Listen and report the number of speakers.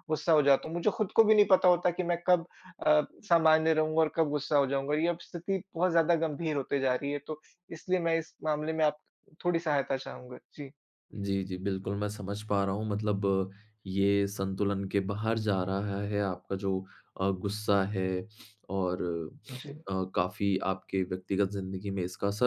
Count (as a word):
two